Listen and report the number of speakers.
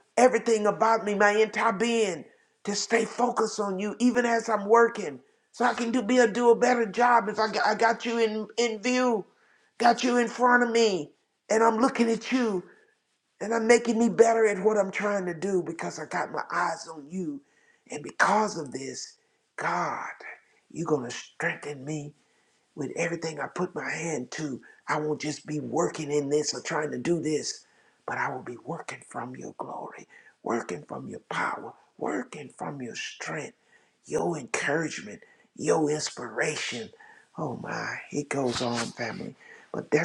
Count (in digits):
1